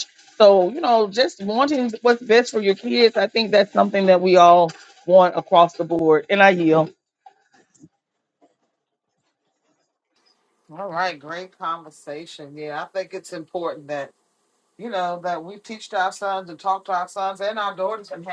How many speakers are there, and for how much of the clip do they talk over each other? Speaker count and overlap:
2, no overlap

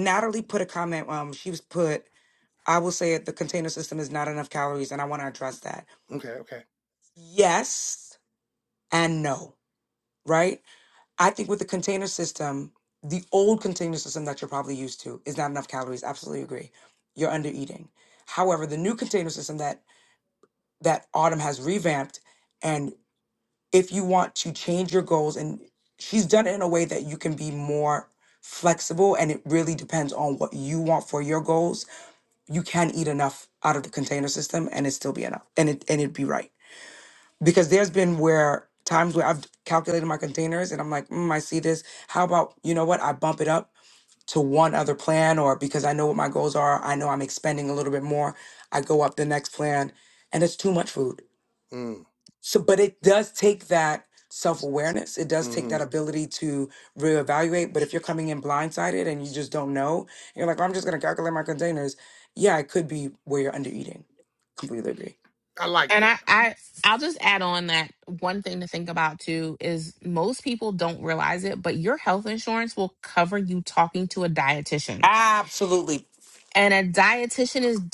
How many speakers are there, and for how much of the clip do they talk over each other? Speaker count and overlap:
3, about 1%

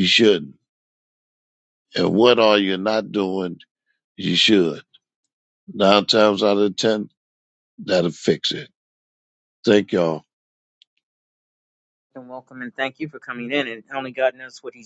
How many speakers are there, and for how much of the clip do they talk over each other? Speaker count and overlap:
2, no overlap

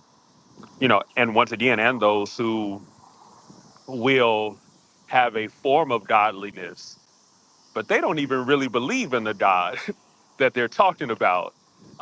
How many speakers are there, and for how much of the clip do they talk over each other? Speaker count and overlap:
1, no overlap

